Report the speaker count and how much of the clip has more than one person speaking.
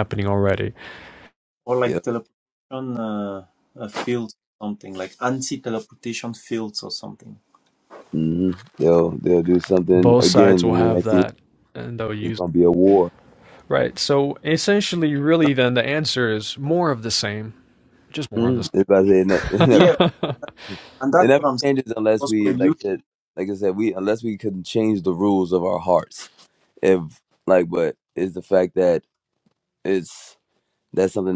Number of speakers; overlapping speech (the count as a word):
three, about 10%